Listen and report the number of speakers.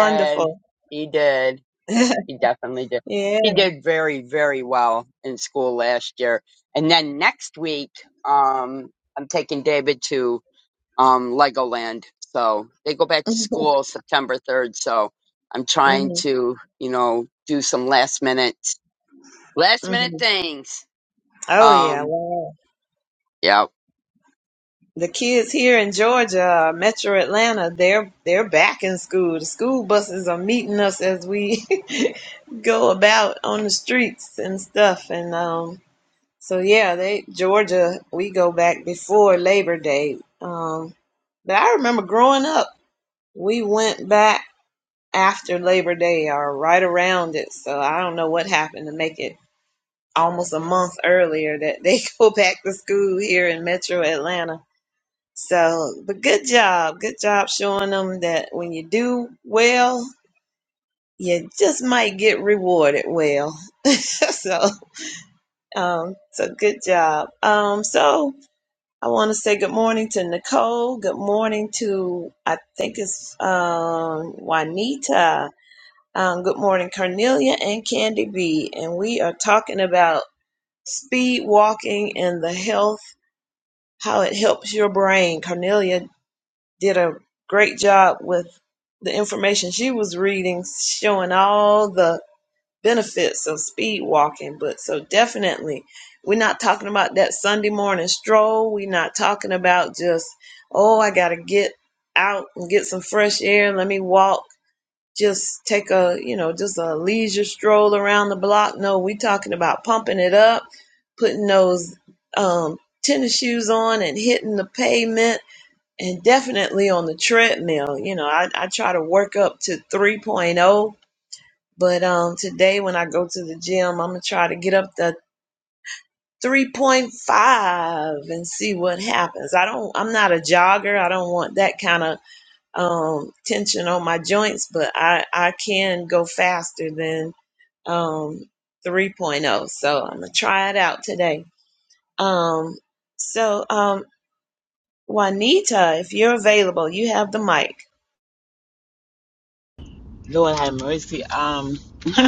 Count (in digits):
3